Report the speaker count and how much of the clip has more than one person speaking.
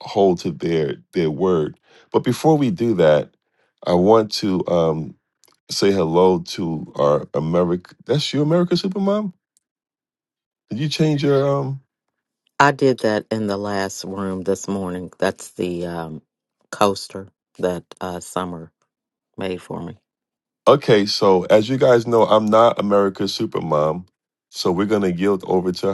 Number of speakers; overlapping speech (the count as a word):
two, no overlap